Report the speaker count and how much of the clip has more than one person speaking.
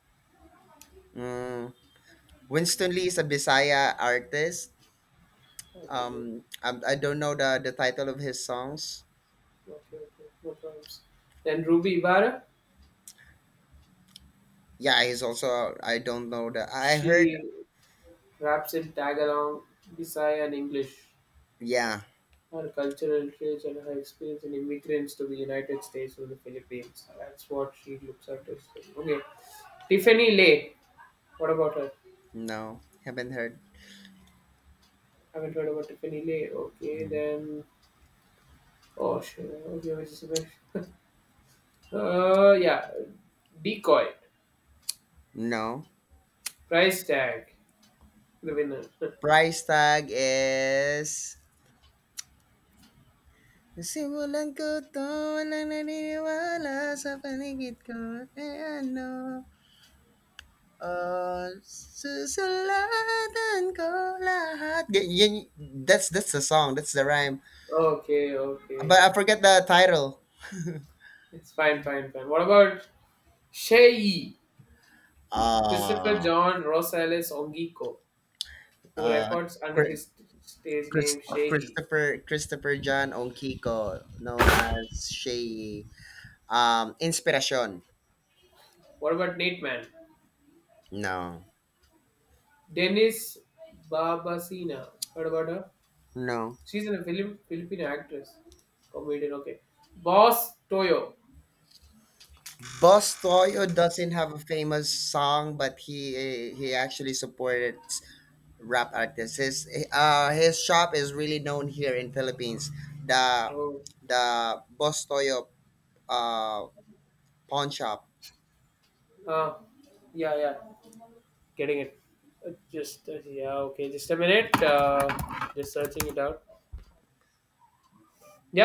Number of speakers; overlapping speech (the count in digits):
2, about 2%